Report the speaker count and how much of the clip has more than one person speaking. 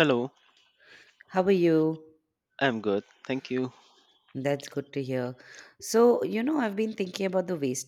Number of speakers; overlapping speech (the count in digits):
2, no overlap